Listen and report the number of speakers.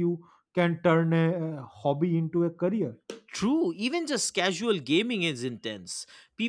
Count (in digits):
2